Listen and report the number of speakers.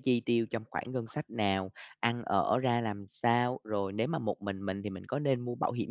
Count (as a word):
one